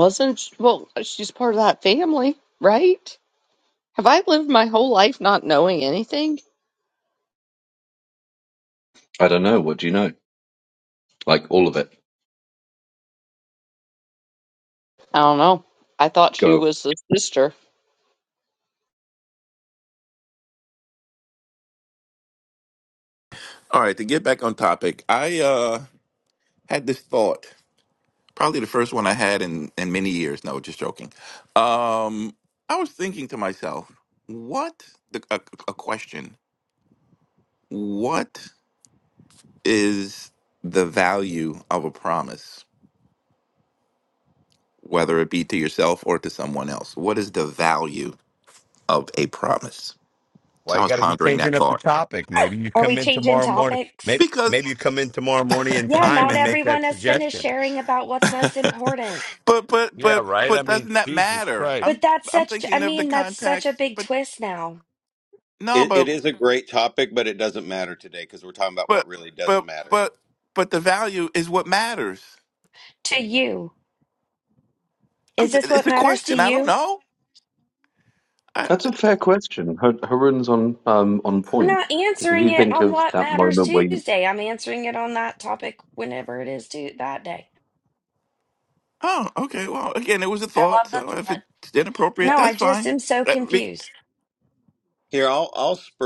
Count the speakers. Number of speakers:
6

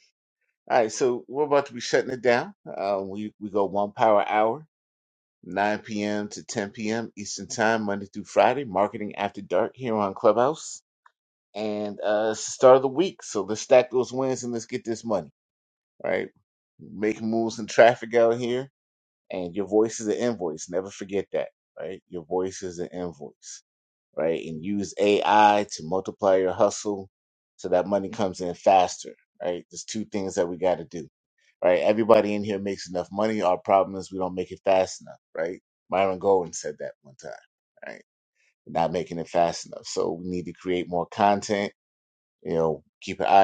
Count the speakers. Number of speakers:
1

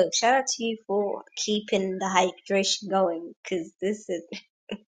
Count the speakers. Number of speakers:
1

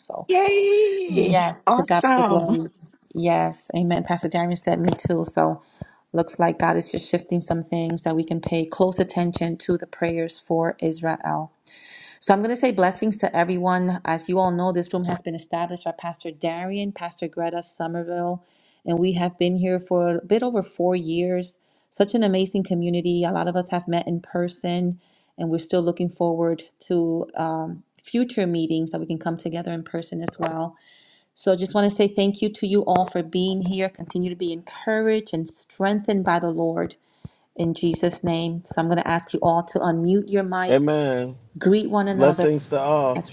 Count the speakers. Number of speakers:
3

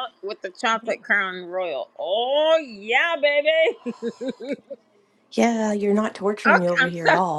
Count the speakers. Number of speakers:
2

